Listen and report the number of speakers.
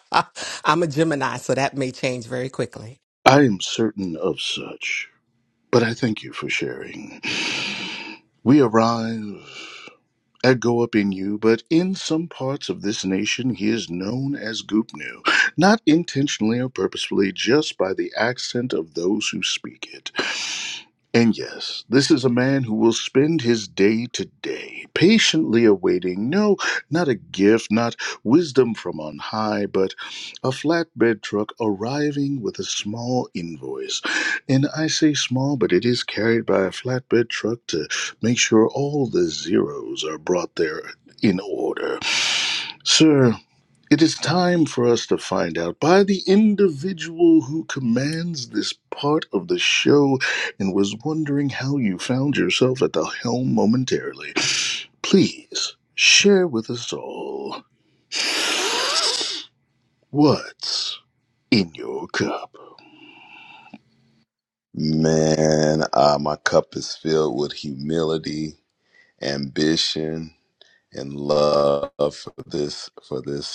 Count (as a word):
three